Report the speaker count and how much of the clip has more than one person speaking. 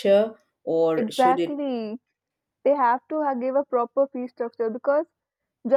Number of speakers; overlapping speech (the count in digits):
2, about 10%